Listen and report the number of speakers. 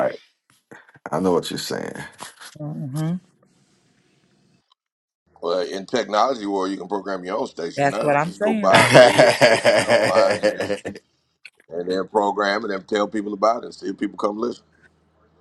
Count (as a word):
three